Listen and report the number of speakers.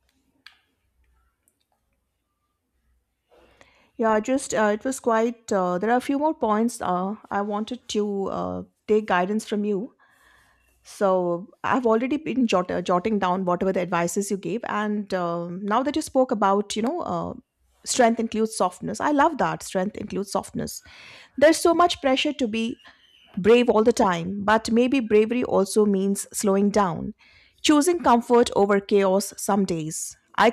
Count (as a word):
one